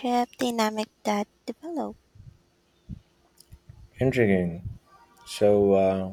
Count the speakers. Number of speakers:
two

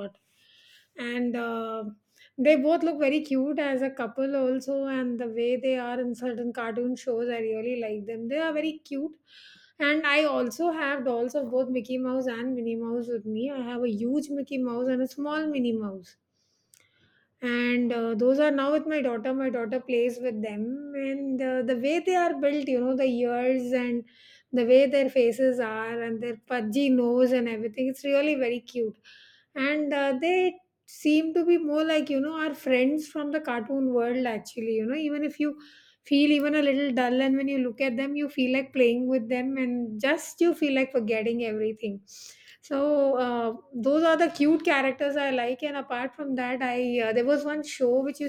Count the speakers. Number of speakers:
one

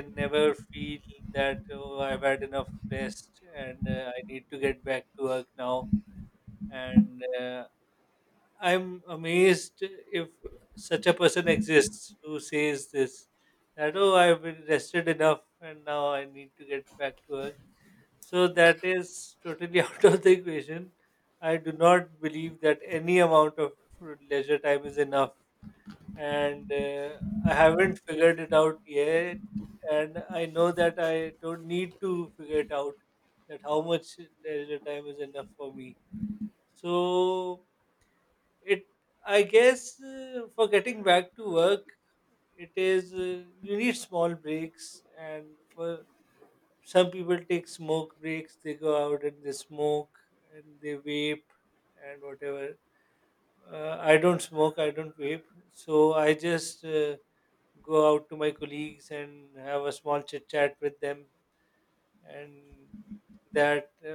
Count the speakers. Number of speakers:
one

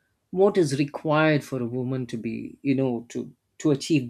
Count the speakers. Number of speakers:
one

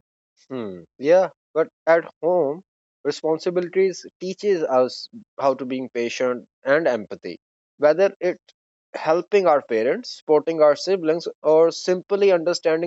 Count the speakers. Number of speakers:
one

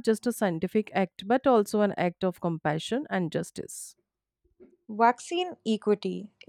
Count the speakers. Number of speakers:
two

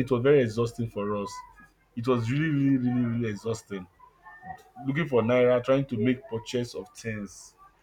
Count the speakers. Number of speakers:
one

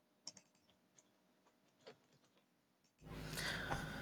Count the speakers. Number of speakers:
zero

